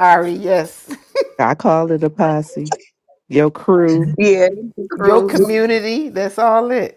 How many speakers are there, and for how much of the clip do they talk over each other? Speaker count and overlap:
three, about 6%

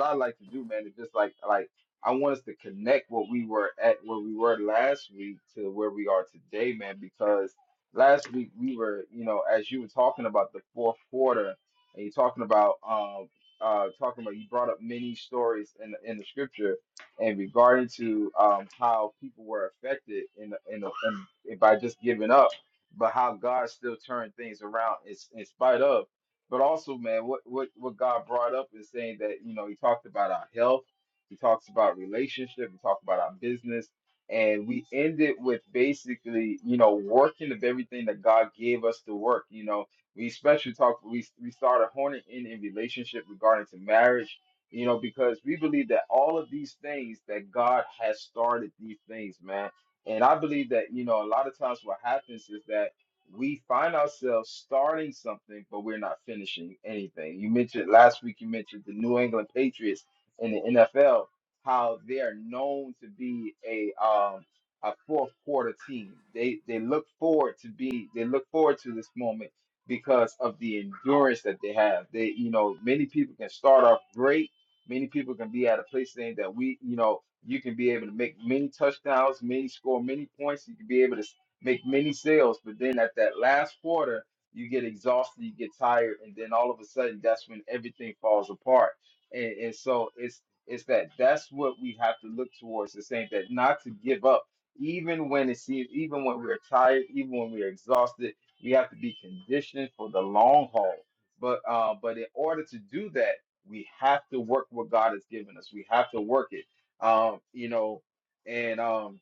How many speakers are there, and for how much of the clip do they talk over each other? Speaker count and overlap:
one, no overlap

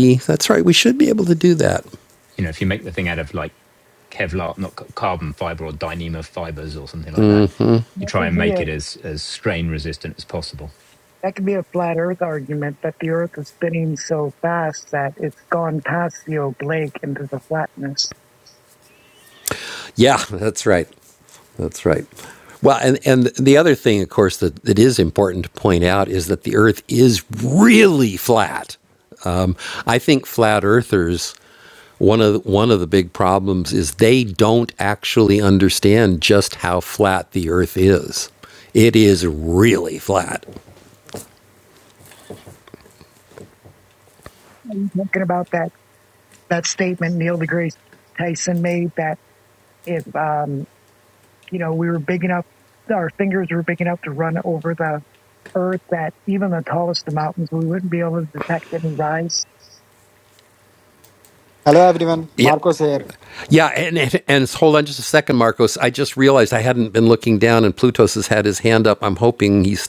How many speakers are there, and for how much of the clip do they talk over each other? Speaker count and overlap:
four, about 1%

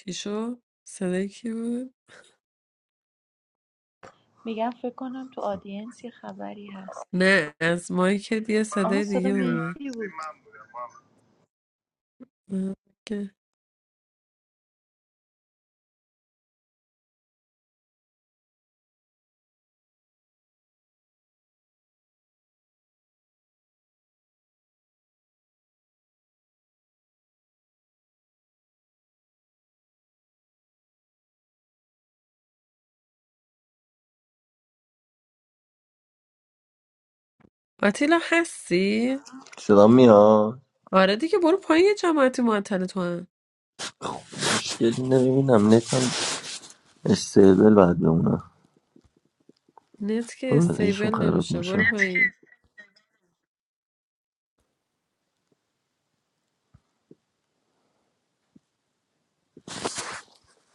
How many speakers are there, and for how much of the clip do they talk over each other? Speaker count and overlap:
three, about 4%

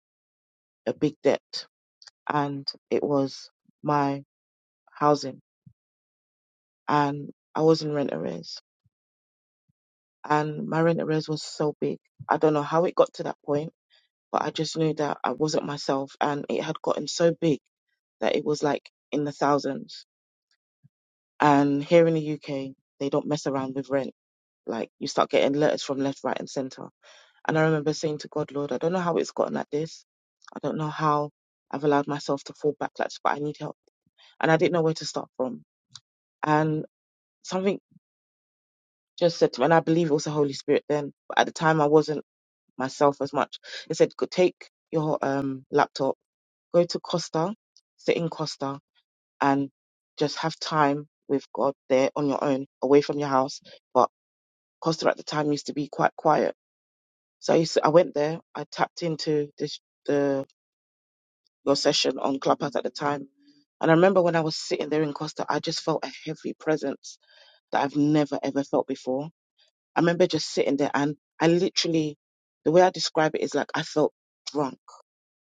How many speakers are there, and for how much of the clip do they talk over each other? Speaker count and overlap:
one, no overlap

